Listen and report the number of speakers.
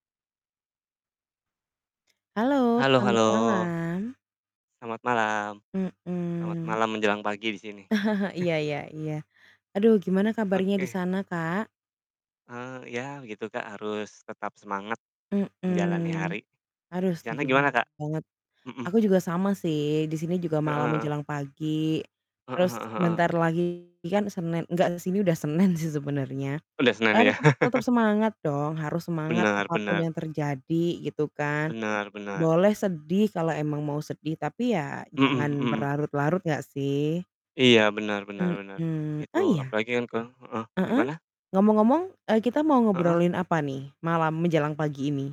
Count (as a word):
two